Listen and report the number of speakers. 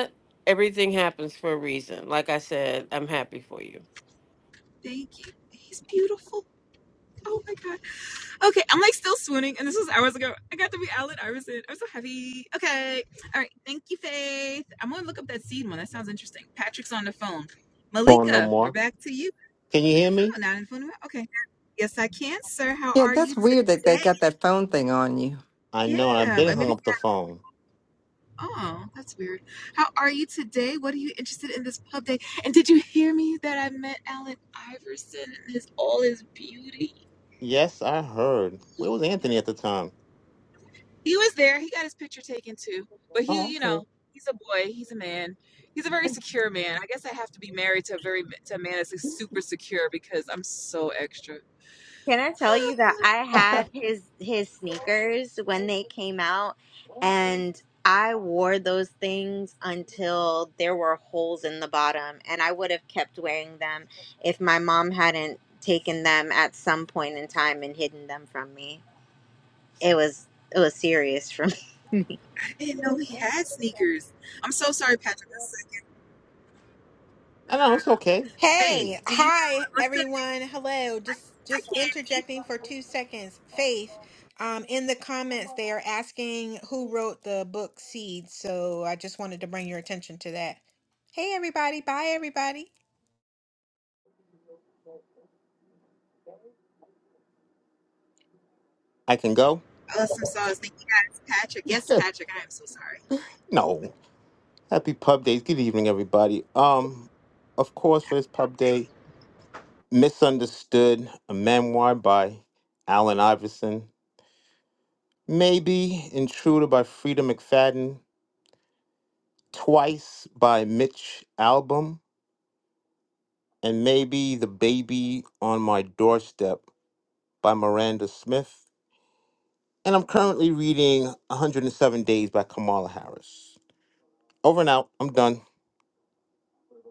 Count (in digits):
6